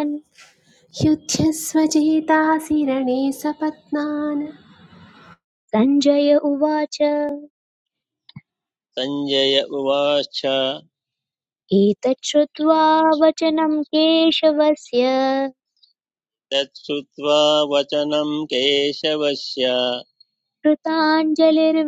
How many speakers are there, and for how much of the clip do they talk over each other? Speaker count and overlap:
3, no overlap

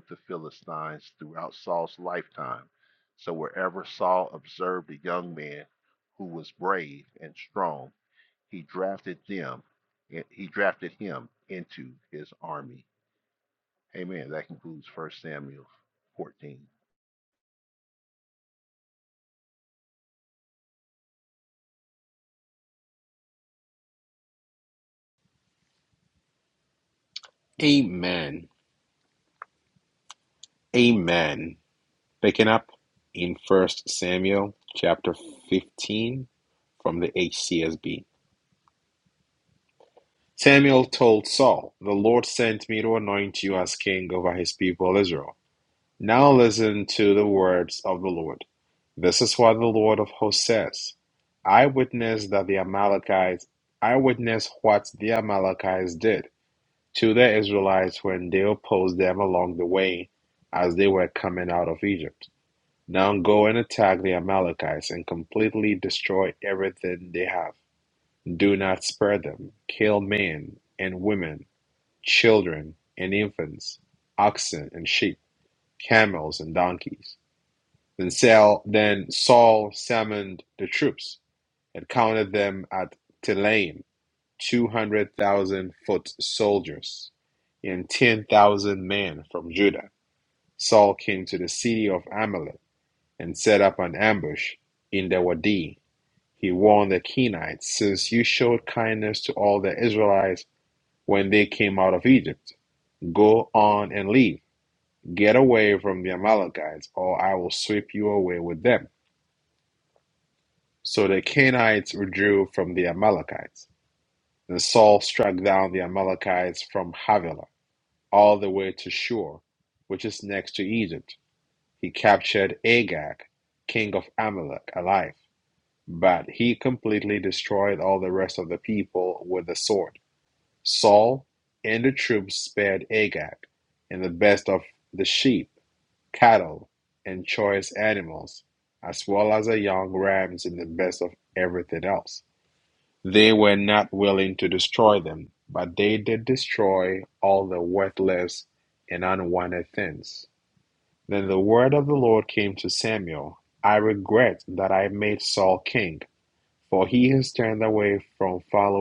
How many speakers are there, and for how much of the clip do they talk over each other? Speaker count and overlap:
2, no overlap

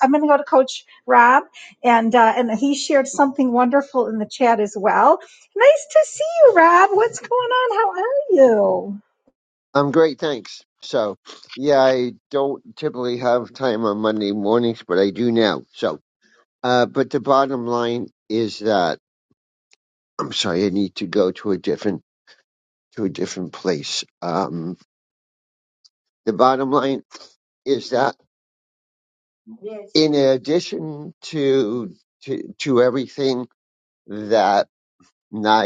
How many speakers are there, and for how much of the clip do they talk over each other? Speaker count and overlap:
2, no overlap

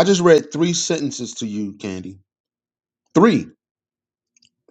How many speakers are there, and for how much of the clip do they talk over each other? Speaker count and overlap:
1, no overlap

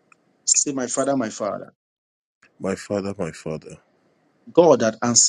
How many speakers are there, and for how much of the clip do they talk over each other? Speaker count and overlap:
2, no overlap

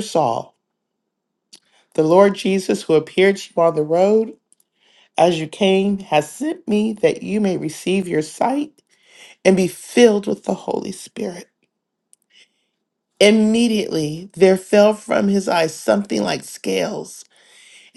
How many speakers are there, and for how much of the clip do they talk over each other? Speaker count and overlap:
1, no overlap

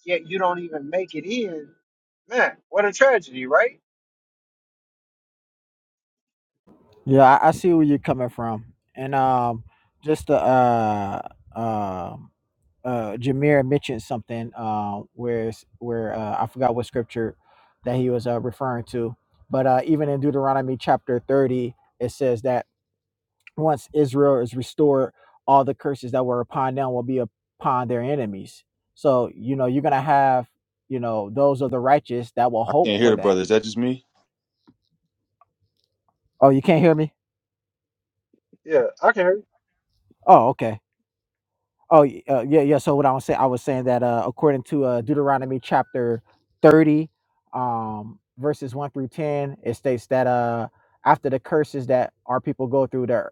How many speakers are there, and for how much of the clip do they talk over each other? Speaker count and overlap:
3, about 1%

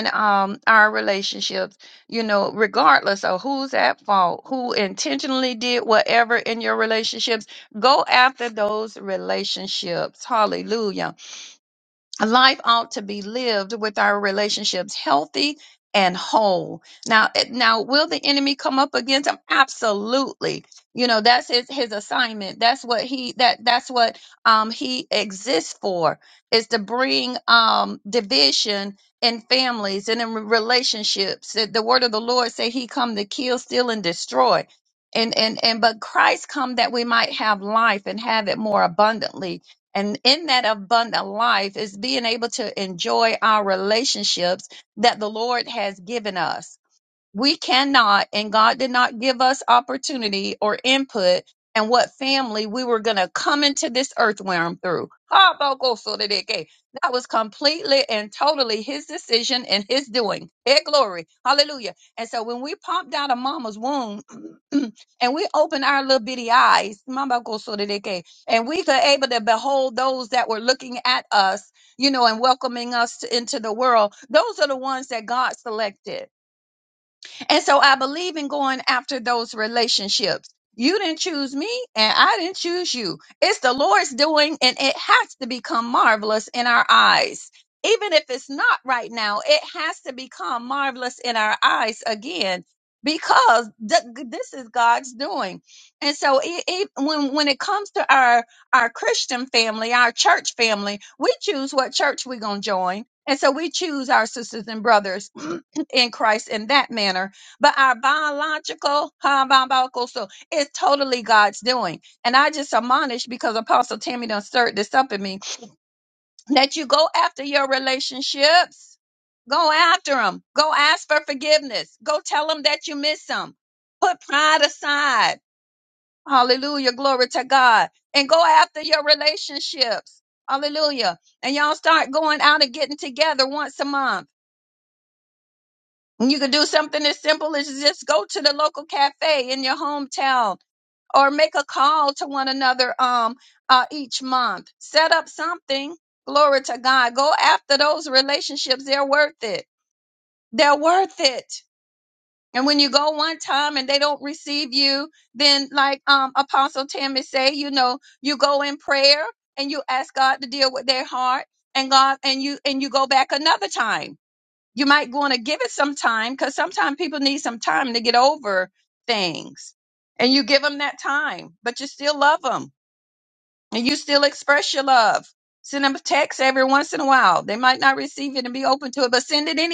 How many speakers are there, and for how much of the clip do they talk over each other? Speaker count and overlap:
1, no overlap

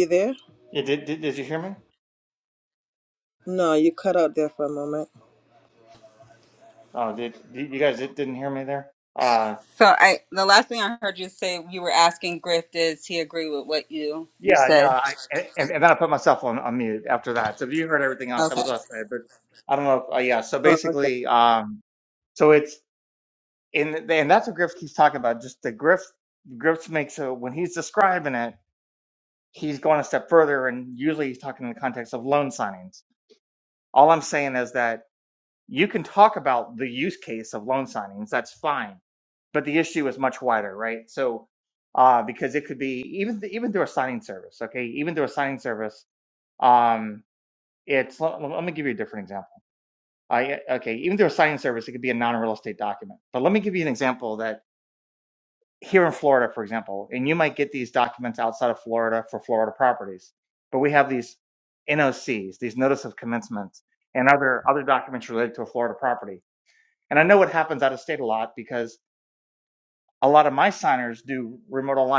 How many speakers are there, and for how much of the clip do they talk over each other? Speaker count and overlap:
3, about 2%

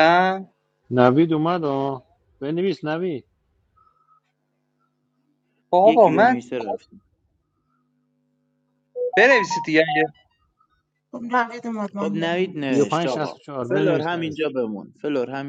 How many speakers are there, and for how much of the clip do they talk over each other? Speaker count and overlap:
4, about 18%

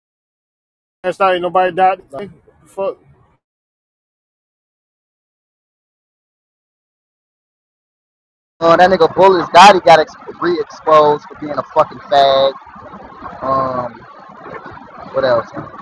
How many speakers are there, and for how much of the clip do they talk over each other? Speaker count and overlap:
2, no overlap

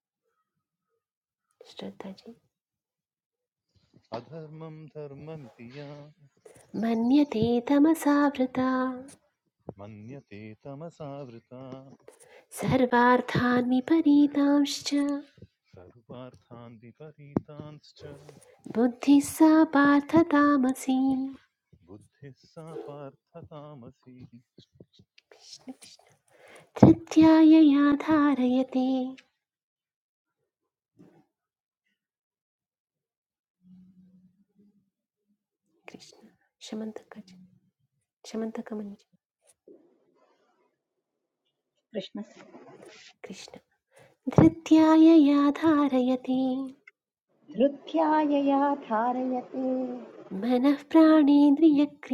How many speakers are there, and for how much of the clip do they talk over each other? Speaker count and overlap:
3, no overlap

